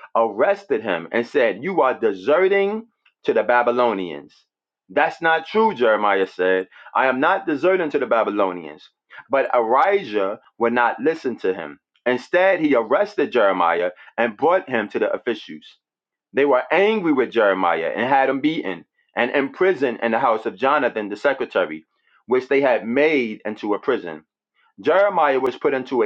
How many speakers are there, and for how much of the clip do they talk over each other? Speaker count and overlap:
1, no overlap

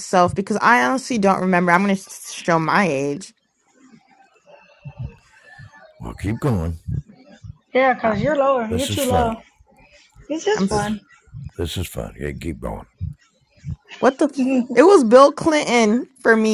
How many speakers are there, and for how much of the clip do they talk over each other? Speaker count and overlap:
3, about 9%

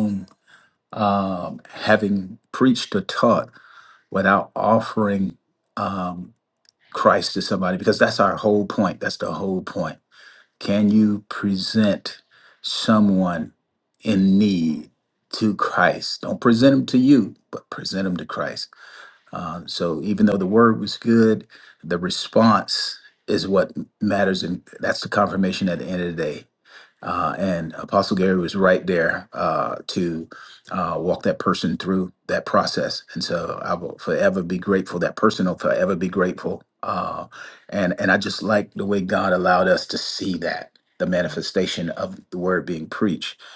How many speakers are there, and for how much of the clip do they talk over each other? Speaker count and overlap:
1, no overlap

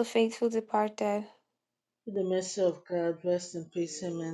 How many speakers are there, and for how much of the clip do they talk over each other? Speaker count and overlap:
2, no overlap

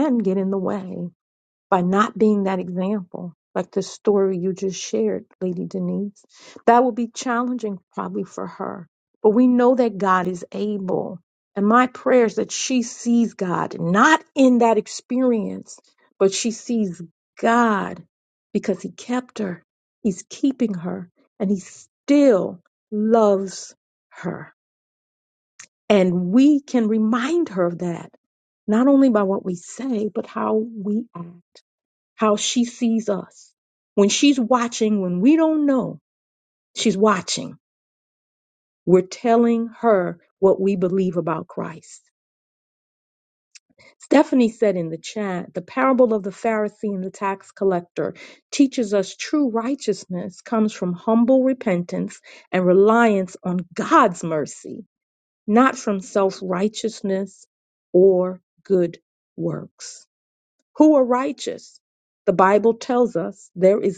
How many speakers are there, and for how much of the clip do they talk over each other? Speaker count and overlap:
1, no overlap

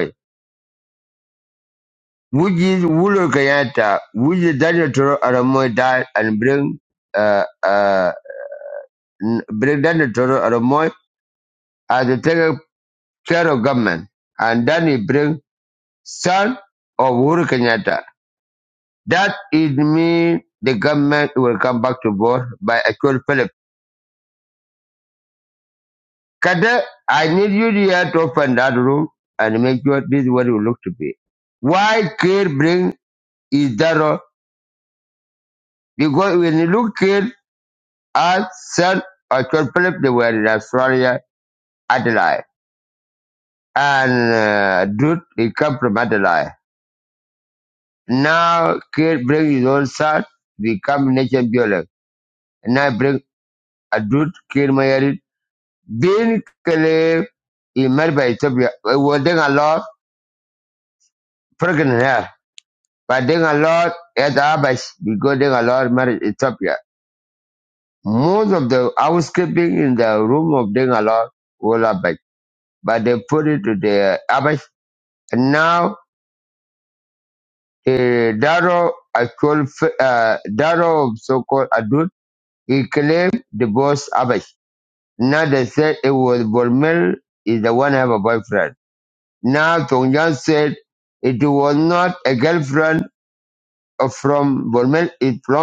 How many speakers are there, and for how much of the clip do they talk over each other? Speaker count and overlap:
1, no overlap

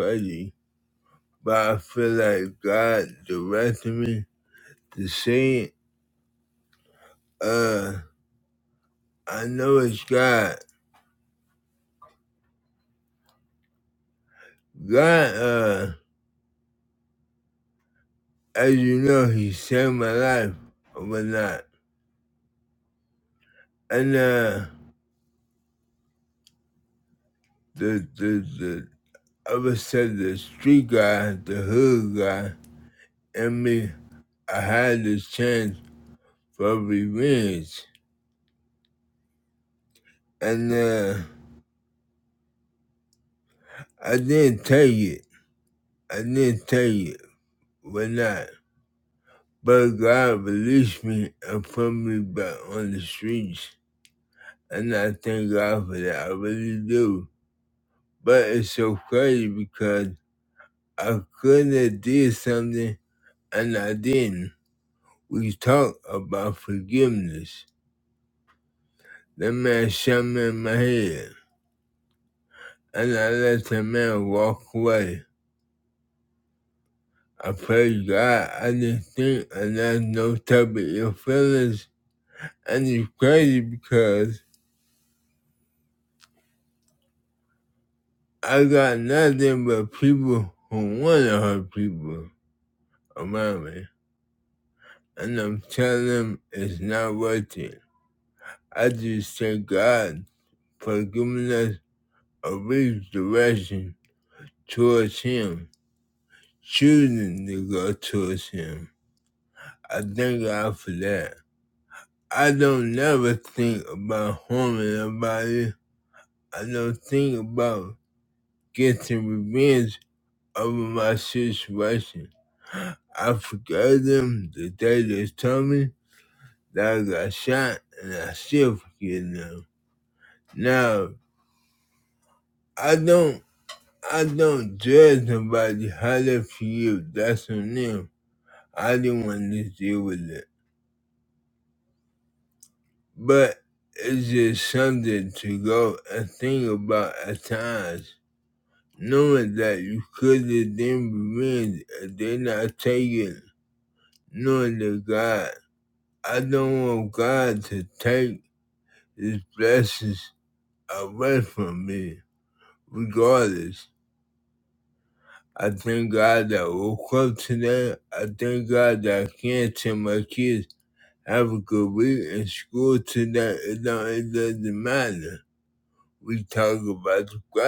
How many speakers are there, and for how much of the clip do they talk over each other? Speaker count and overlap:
1, no overlap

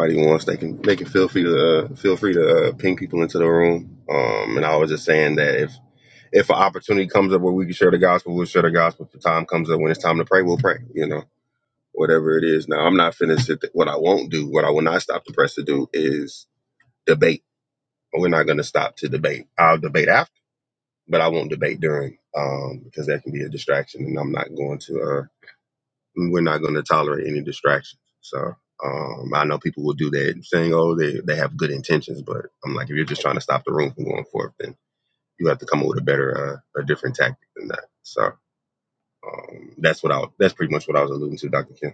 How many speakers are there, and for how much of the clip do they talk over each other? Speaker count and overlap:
1, no overlap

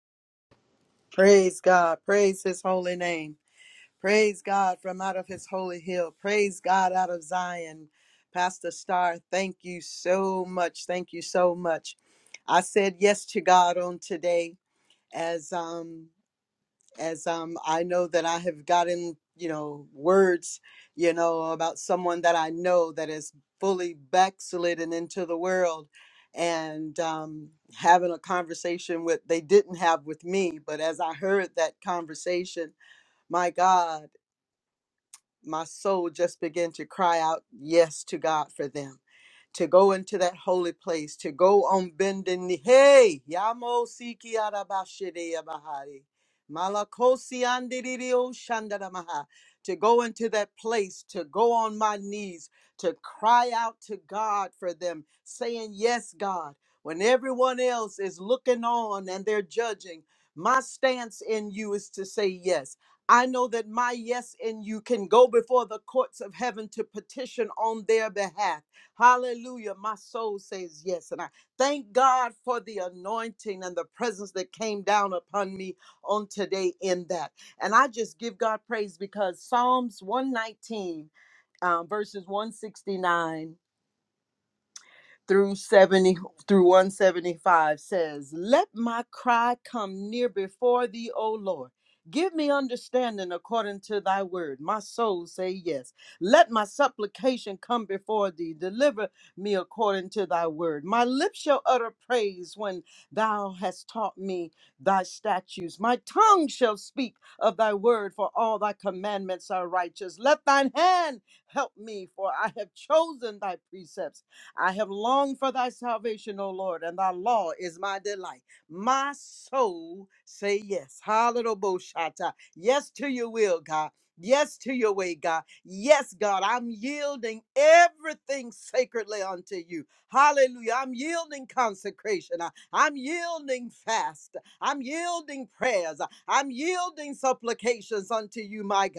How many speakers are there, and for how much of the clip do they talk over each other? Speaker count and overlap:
1, no overlap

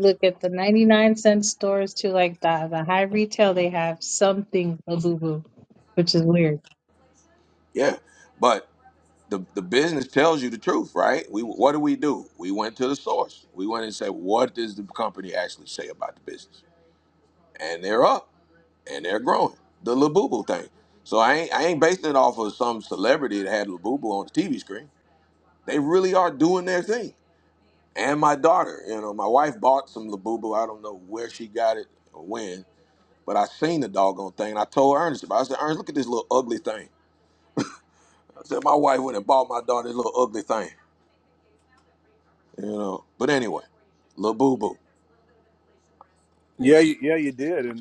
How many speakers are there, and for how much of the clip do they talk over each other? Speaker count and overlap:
3, about 1%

